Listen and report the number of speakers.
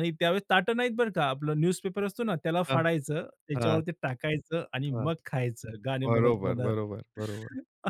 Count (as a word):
two